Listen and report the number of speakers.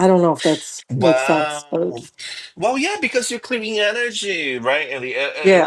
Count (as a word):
two